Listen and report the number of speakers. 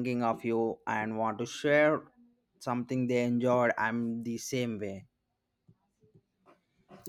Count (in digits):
1